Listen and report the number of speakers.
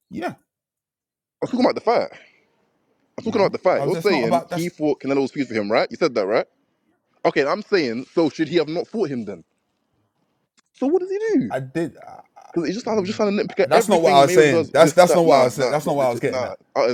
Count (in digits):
2